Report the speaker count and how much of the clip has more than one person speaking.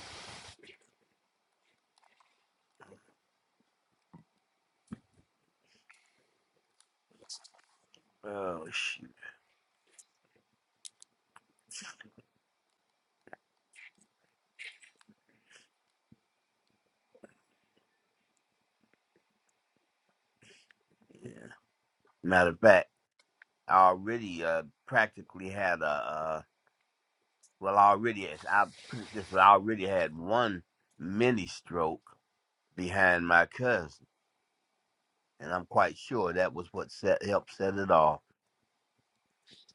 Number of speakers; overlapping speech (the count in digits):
1, no overlap